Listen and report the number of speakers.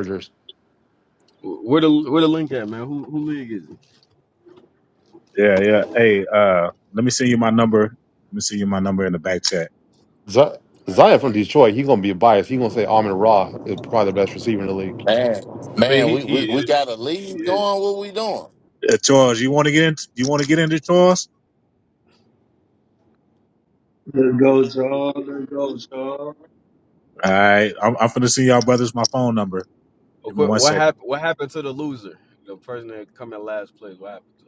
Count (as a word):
five